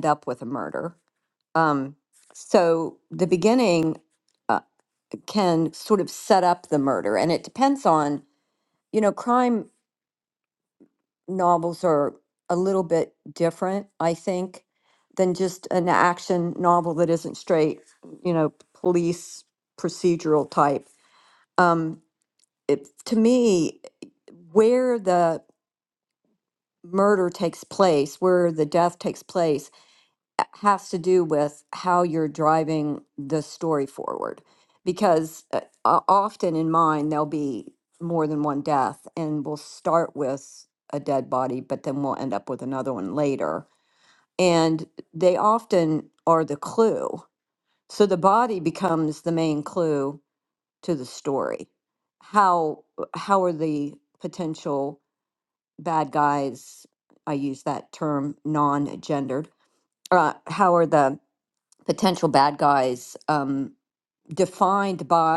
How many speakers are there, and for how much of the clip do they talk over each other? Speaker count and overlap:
1, no overlap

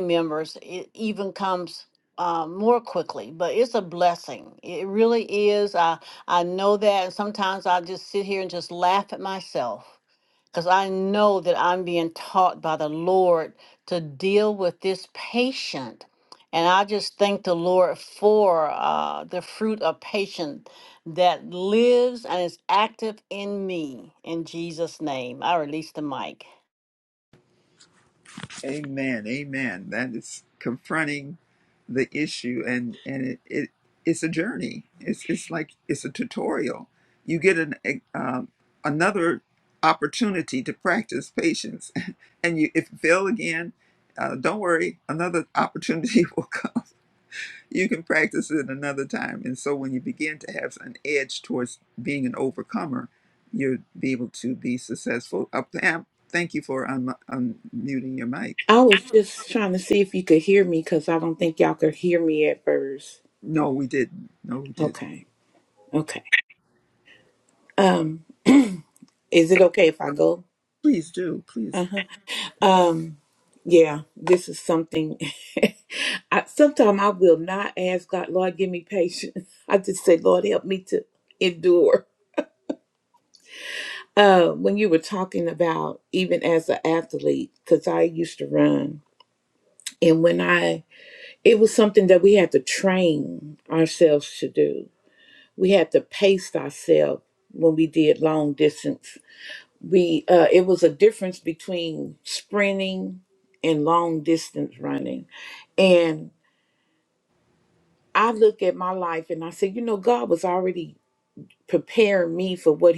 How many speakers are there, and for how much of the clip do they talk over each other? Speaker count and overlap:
3, under 1%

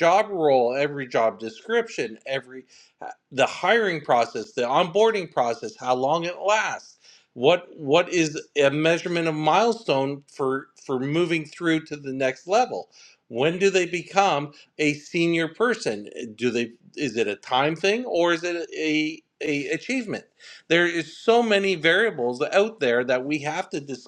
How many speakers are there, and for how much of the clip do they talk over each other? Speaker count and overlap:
1, no overlap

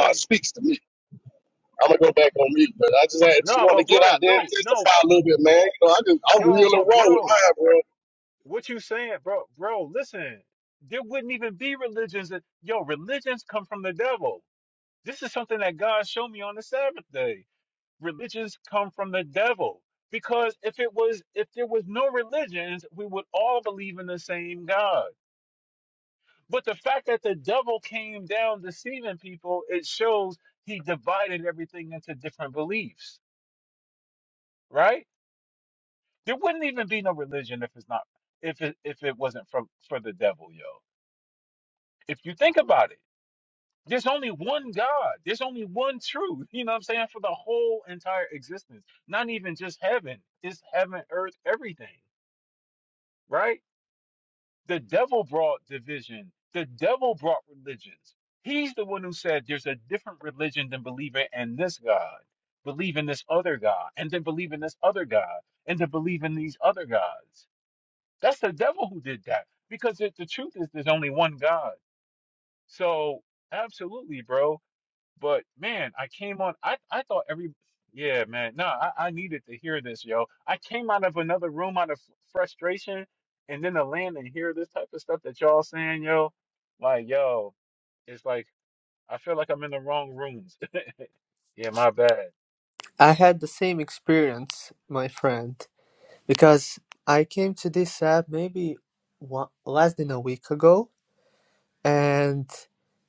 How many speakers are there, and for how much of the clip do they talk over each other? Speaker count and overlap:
3, about 3%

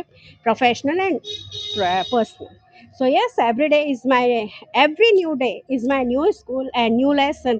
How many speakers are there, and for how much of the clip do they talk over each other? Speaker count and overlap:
1, no overlap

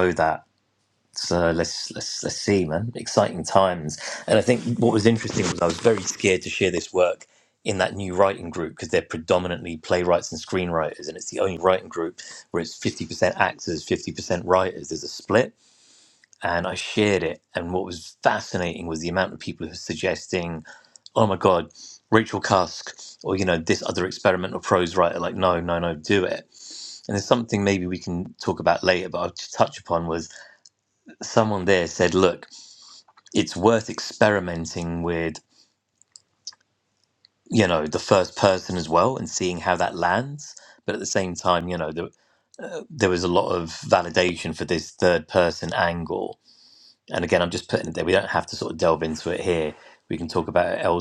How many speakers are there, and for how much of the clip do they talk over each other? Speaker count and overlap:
1, no overlap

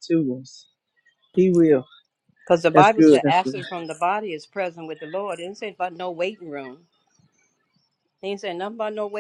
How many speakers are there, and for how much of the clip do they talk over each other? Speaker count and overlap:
2, about 9%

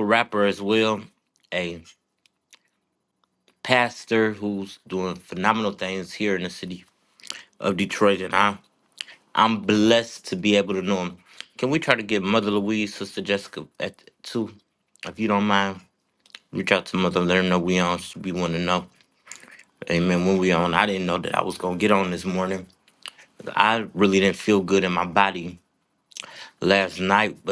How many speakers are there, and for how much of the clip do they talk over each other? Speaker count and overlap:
1, no overlap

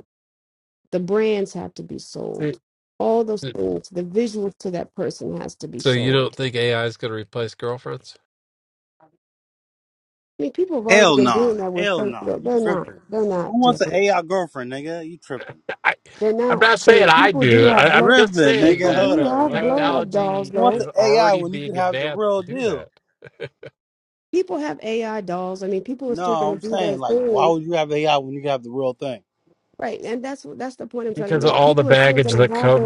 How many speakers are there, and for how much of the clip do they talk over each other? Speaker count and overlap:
3, about 39%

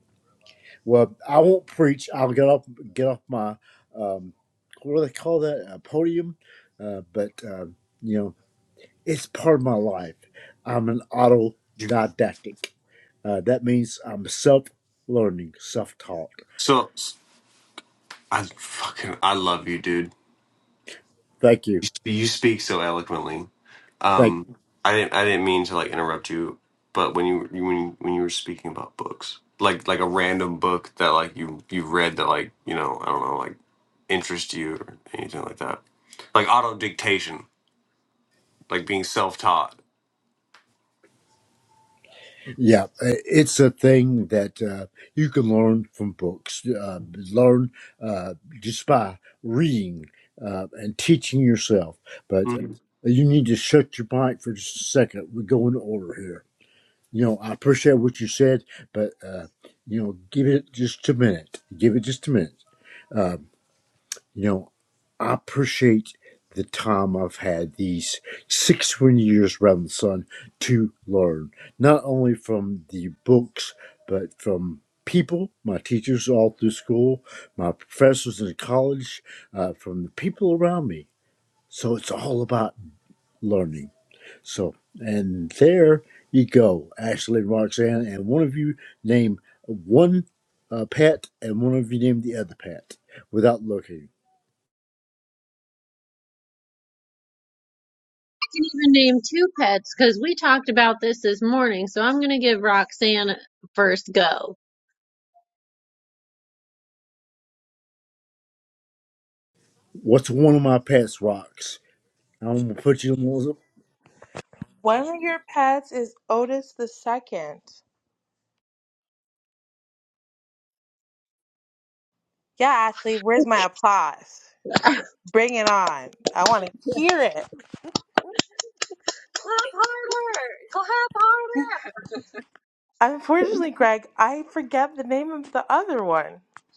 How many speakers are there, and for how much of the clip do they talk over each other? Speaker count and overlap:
4, under 1%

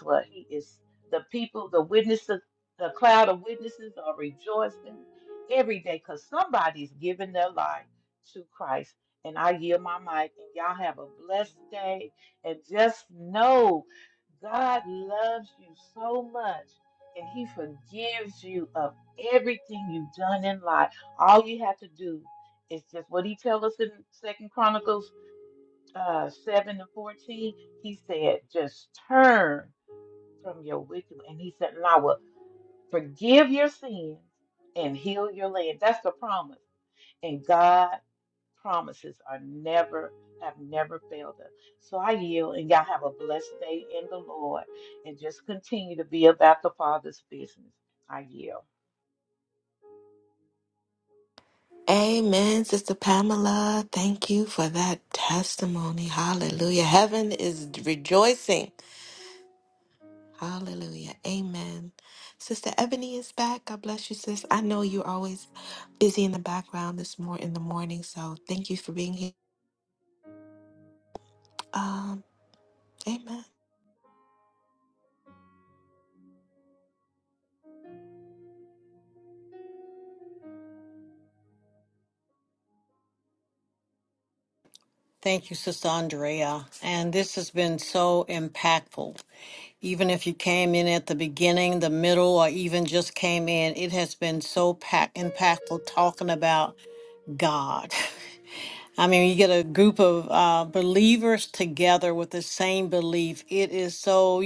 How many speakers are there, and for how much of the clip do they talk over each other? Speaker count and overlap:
3, no overlap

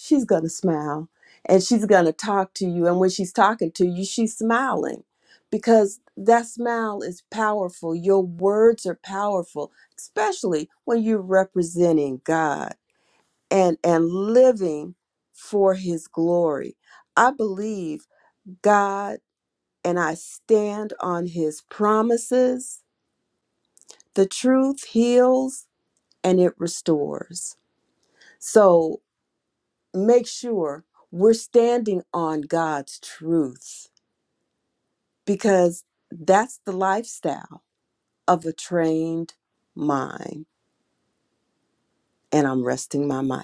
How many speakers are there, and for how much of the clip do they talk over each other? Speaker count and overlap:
1, no overlap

